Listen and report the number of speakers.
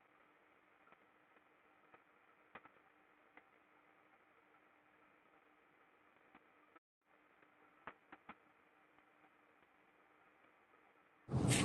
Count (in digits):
0